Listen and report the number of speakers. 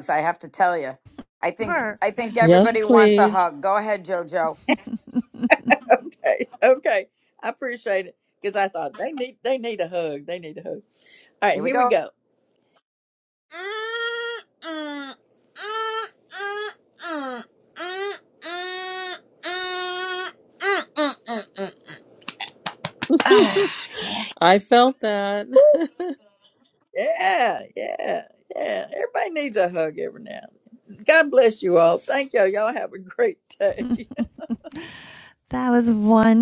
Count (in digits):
4